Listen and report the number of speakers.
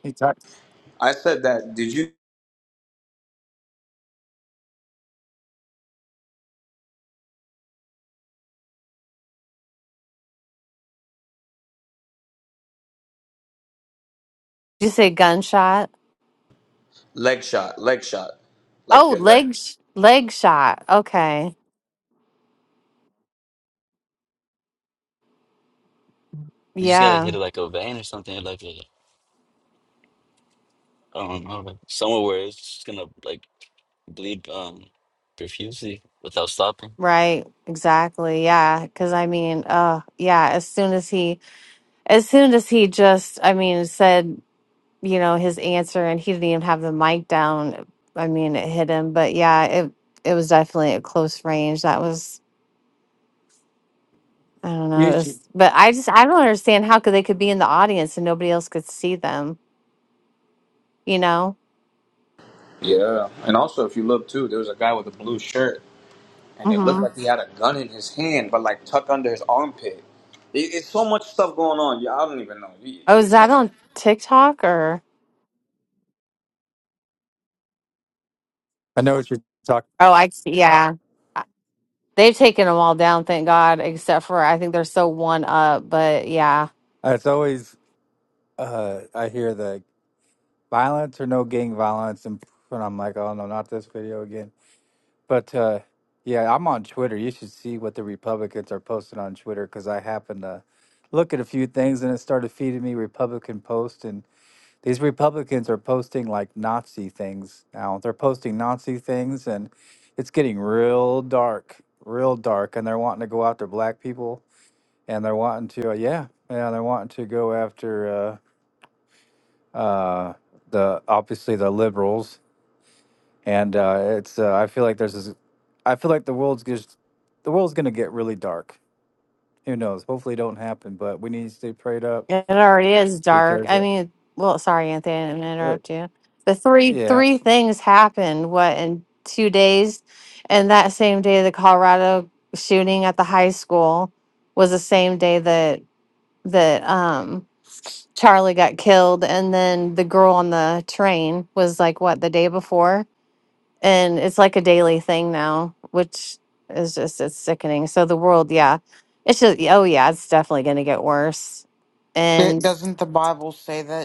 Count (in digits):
5